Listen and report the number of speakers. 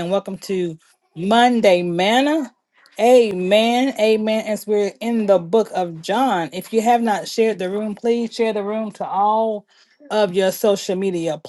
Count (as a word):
one